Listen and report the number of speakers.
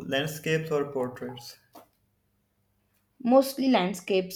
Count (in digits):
2